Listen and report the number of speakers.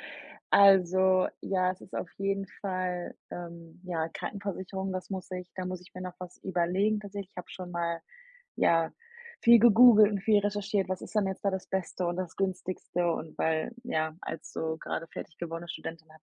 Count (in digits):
1